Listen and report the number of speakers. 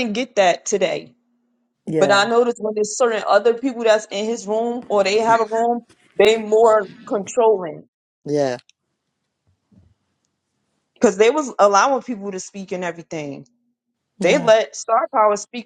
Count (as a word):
two